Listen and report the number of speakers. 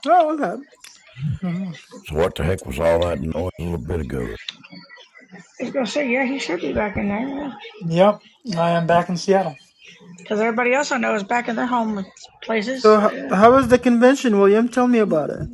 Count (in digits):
4